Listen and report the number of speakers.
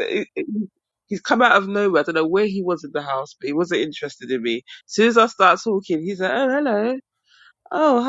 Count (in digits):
1